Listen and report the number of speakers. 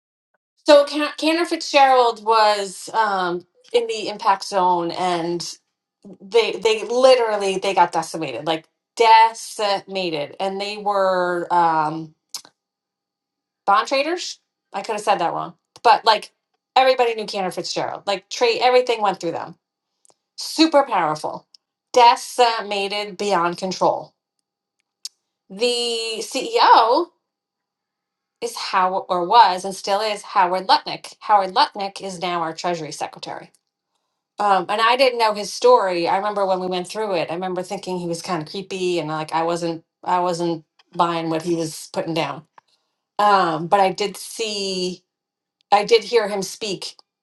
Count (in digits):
1